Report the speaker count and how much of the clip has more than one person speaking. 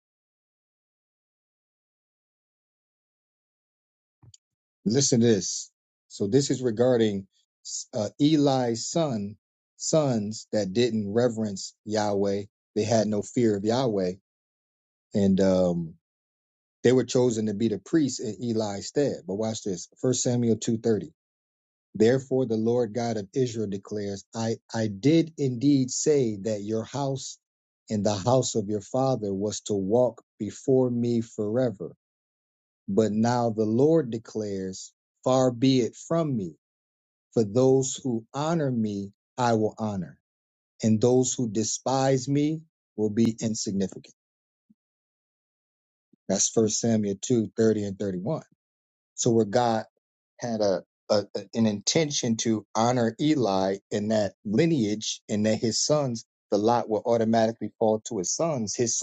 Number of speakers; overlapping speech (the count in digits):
1, no overlap